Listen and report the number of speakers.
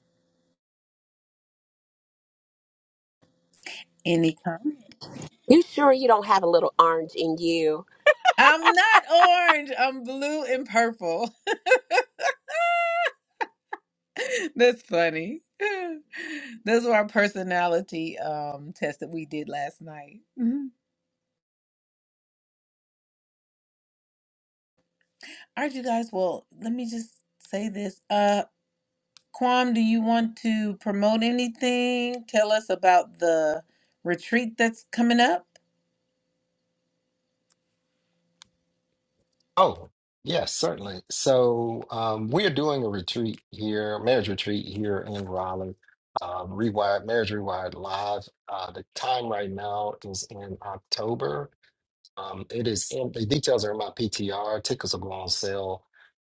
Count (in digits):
3